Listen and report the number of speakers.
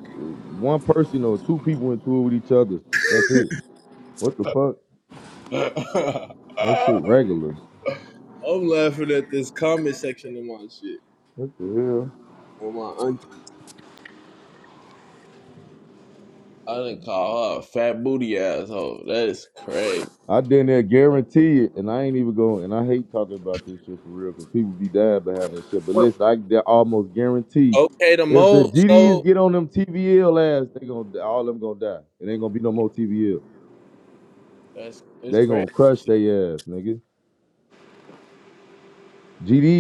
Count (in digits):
2